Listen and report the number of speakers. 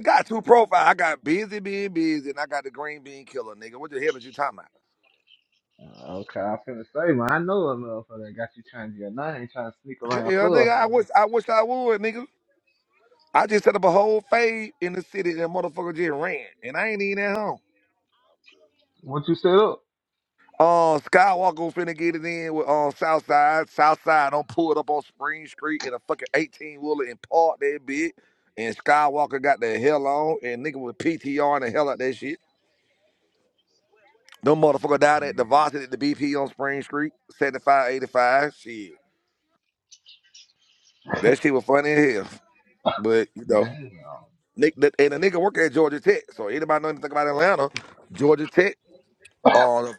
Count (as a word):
two